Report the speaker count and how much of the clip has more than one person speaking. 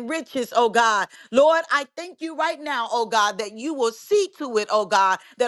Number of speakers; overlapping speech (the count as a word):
one, no overlap